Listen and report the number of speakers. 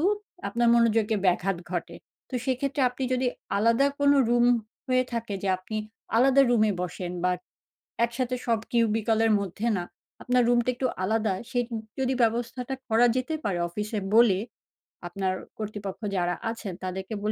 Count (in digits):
1